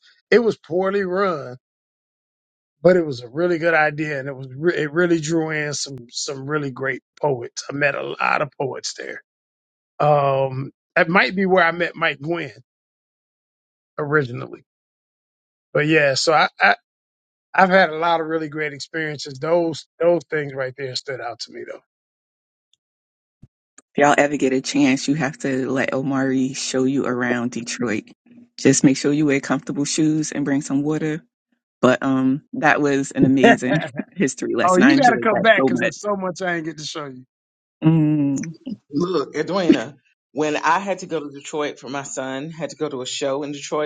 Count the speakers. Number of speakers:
three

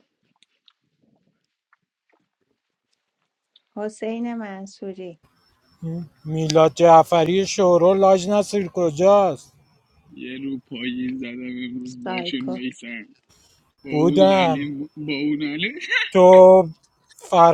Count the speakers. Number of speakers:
three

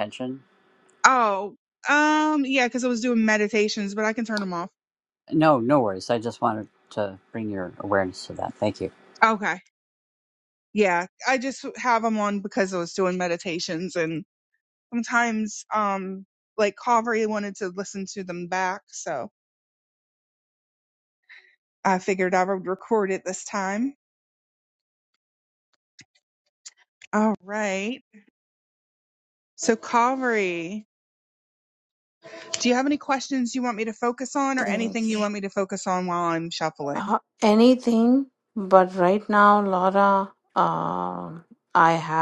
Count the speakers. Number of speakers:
three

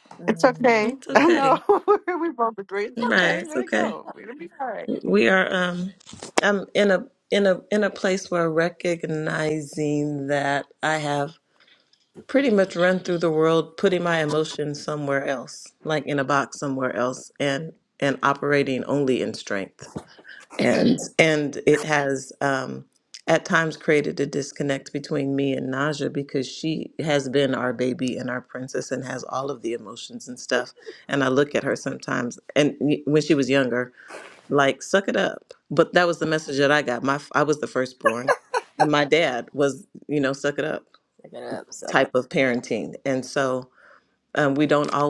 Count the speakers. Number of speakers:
three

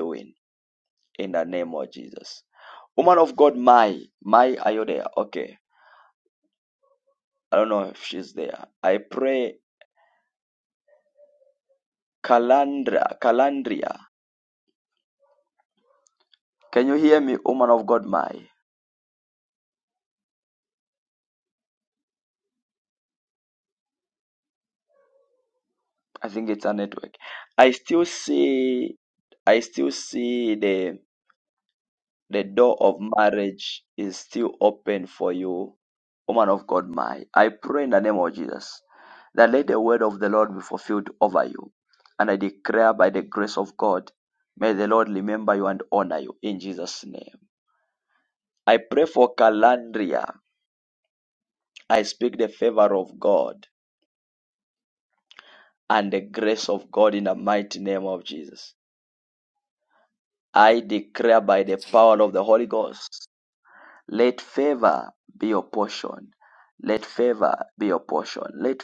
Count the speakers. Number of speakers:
one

